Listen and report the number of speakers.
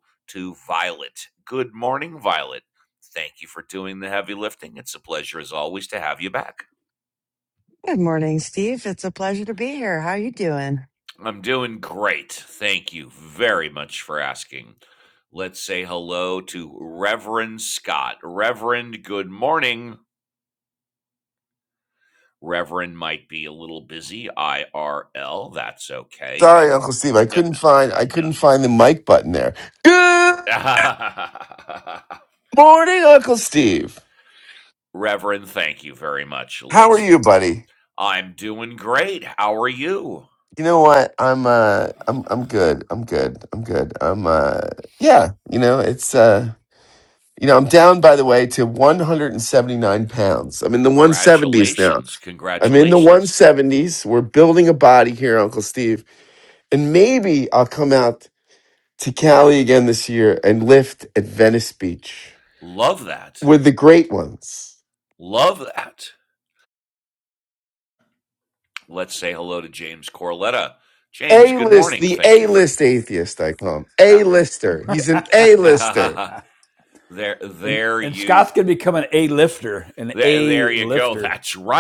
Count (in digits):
4